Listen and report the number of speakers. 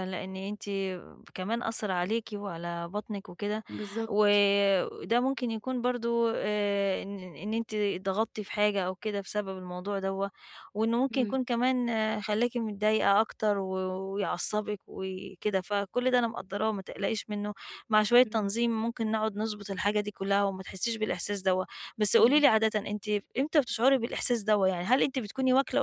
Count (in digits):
2